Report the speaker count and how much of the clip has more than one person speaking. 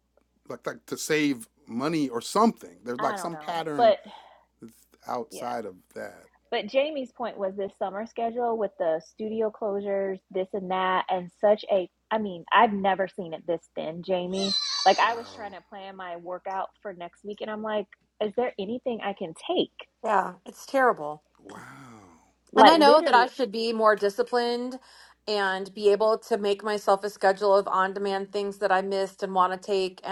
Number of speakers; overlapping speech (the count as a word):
three, about 8%